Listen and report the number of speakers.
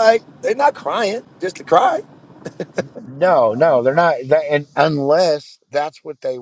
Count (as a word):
two